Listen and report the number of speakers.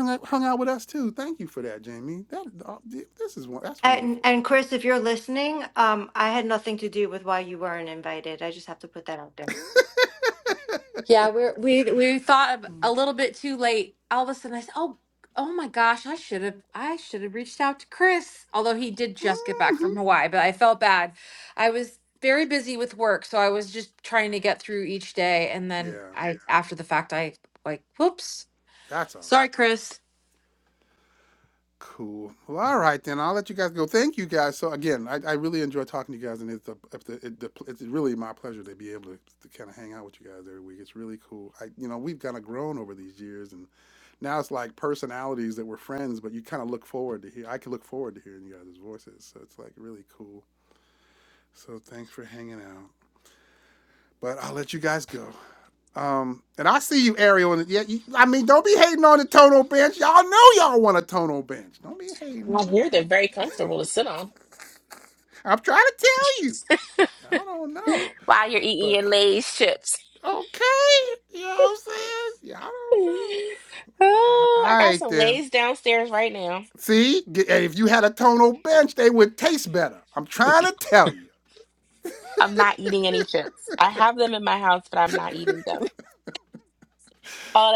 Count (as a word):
four